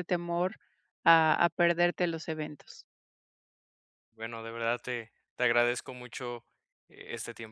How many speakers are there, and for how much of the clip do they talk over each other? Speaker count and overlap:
2, no overlap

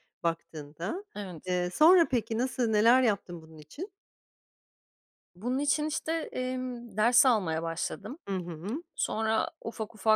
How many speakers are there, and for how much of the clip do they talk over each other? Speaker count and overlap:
2, no overlap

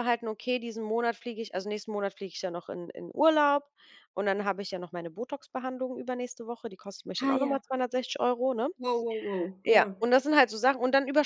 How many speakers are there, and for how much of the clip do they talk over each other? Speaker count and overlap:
2, about 6%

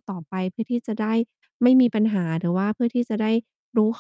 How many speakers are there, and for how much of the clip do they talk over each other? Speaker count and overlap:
1, no overlap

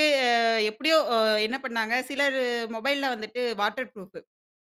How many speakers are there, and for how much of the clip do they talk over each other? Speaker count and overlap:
1, no overlap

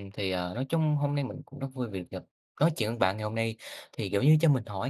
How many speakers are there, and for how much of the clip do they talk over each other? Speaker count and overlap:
1, no overlap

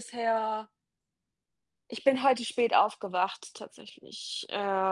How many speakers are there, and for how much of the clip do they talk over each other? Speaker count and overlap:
1, no overlap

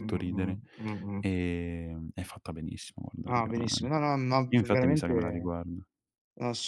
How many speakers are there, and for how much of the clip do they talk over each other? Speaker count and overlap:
2, about 27%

